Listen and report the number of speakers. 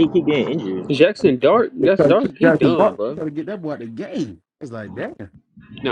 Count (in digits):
3